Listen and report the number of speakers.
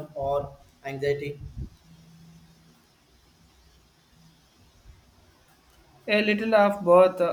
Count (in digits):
2